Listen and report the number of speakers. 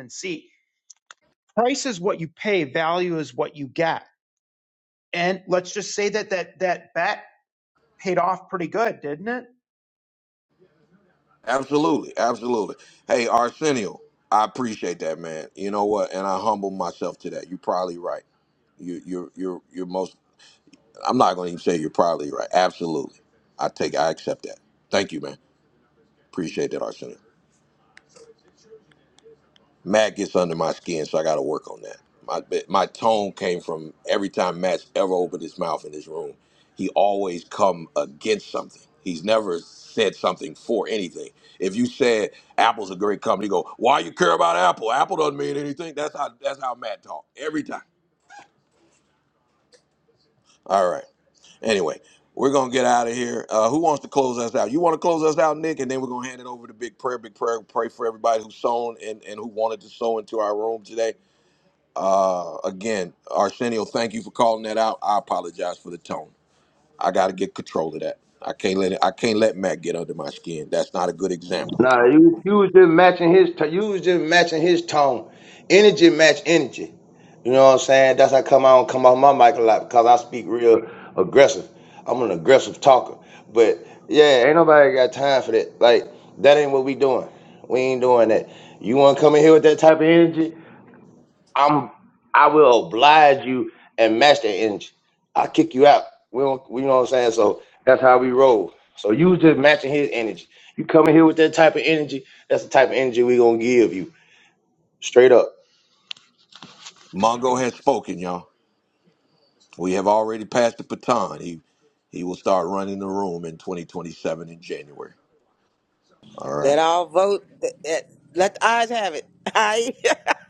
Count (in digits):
4